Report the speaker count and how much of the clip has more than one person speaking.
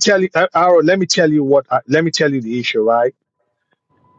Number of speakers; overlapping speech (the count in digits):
1, no overlap